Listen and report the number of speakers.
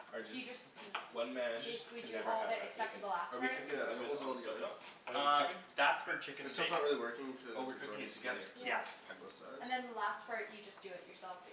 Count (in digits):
4